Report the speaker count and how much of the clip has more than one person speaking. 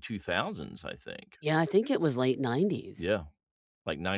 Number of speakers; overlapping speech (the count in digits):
2, no overlap